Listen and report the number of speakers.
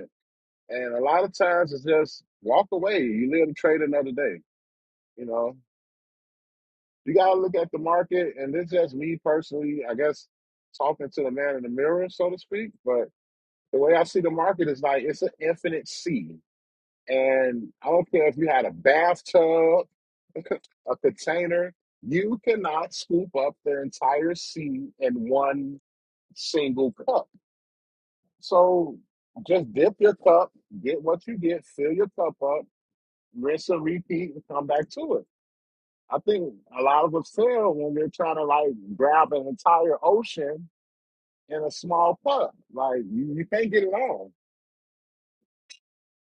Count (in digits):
1